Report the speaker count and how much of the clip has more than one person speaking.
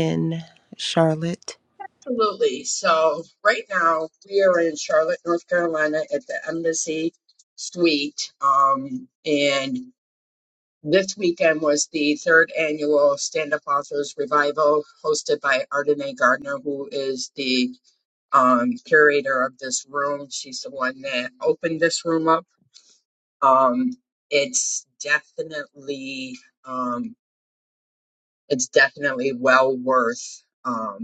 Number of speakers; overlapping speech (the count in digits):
2, no overlap